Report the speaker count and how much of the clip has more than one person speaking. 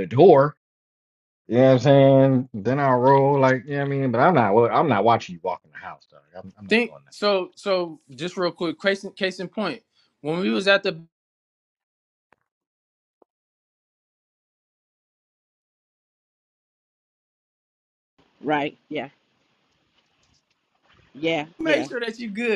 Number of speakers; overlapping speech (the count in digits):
3, about 2%